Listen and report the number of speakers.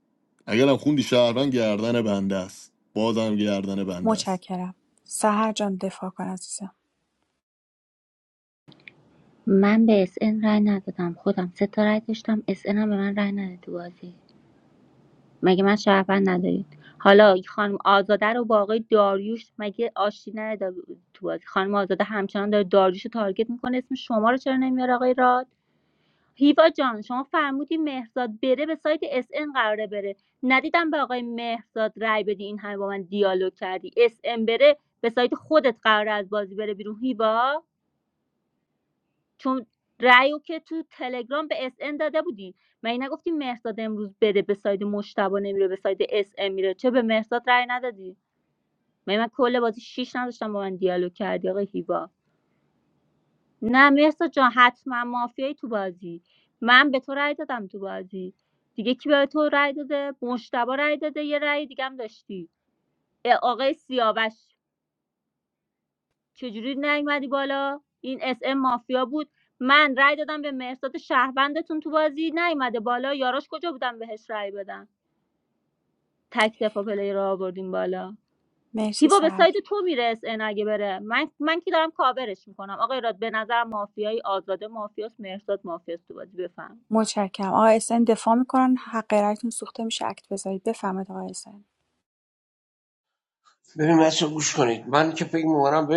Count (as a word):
four